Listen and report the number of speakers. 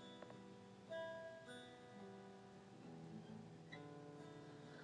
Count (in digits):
0